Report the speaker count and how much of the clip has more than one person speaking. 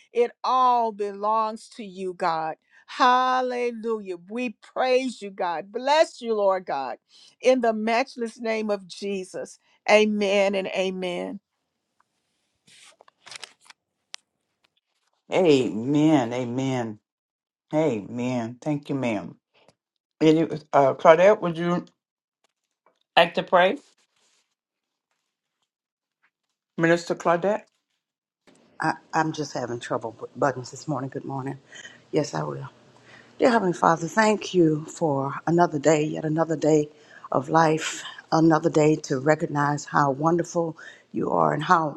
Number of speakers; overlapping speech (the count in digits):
3, no overlap